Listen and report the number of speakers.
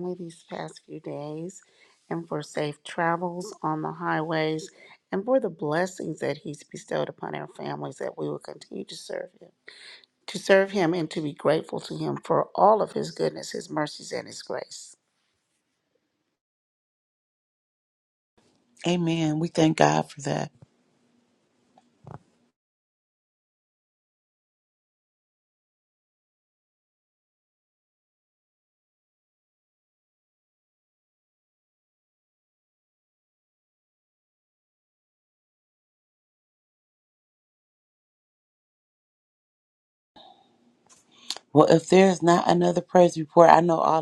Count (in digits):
2